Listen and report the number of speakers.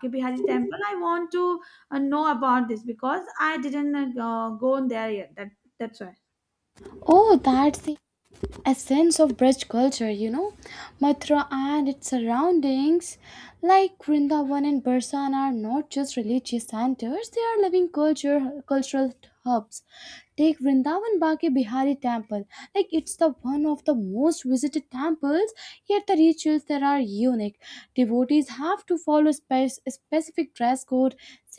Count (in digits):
2